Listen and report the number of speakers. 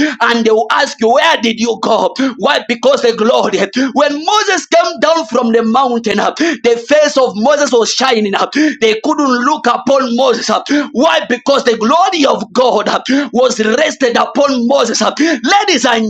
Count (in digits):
1